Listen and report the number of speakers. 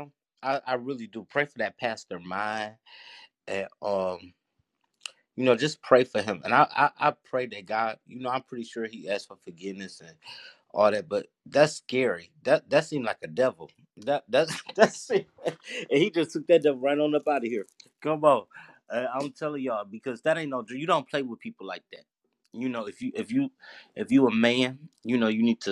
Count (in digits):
1